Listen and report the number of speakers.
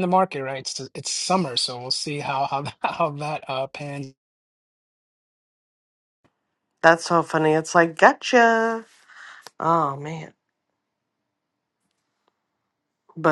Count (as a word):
two